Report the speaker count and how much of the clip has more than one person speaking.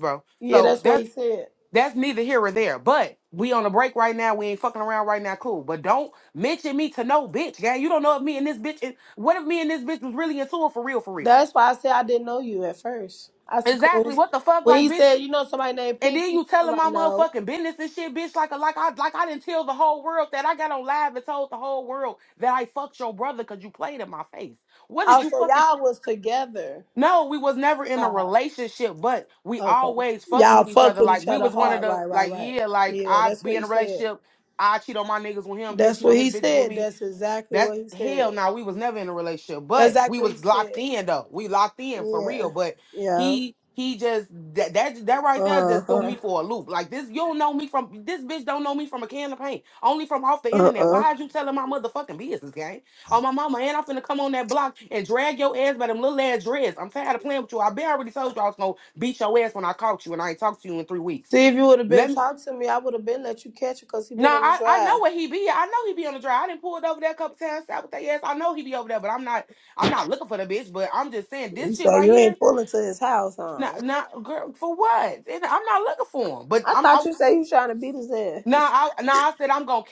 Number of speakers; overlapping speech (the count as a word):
two, about 19%